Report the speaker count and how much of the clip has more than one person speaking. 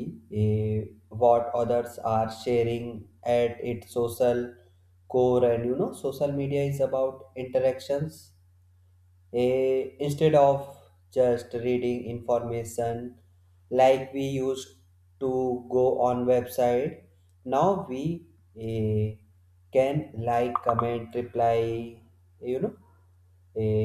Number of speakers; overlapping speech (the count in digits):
1, no overlap